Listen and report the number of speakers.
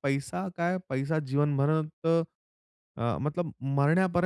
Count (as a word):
one